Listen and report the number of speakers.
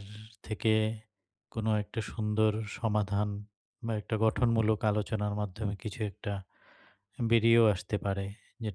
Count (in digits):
1